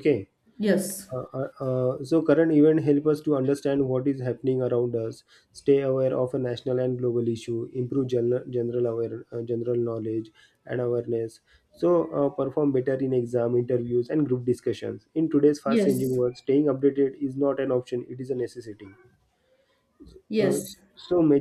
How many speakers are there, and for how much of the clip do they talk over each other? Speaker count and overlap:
2, about 3%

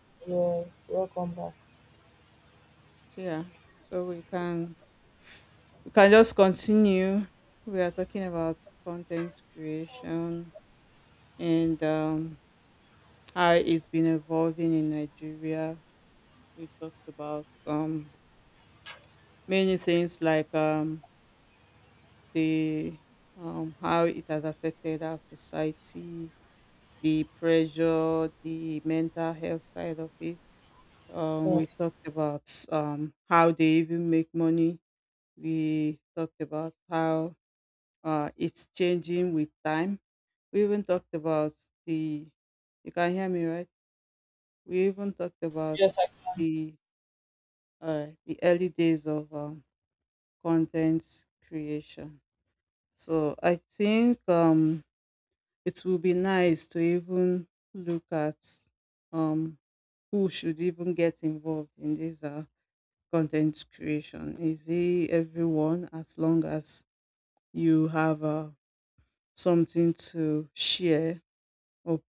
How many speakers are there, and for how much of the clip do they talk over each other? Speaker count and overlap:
2, under 1%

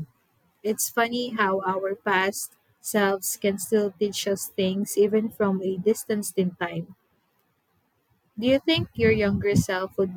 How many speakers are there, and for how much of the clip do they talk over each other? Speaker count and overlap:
1, no overlap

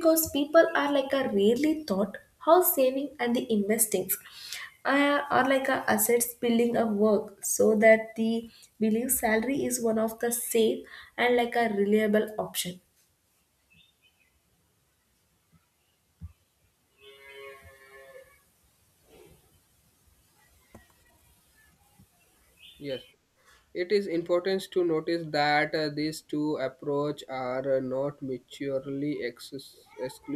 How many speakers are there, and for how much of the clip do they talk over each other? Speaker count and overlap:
2, no overlap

